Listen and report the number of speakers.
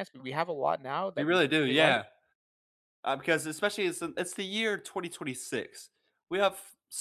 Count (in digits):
2